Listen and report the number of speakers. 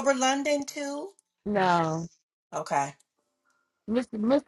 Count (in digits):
2